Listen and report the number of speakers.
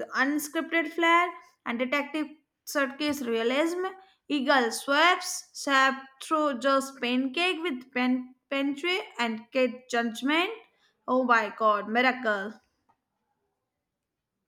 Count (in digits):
1